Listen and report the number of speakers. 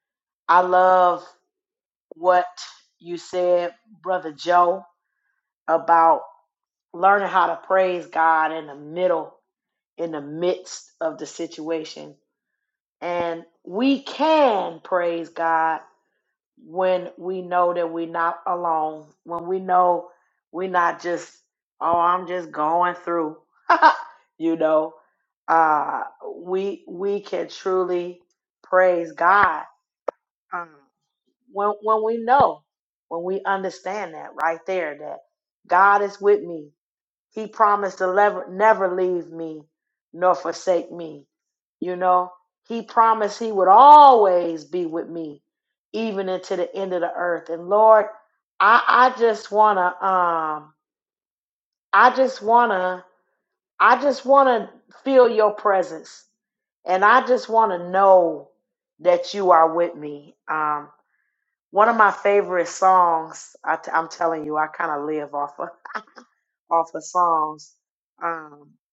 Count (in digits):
1